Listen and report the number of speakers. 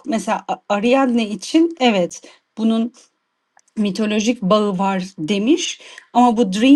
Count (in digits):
1